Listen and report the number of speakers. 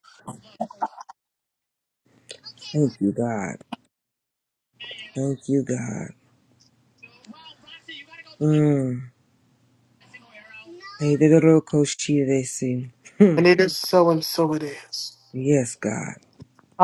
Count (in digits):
3